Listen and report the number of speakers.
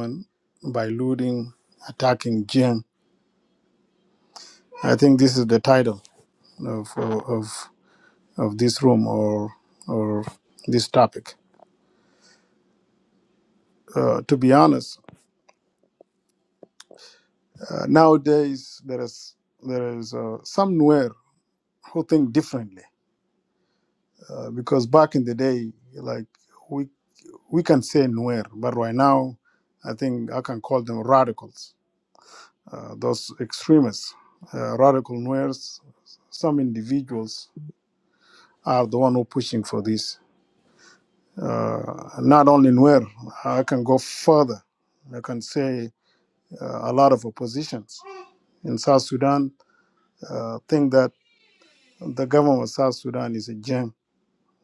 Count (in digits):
1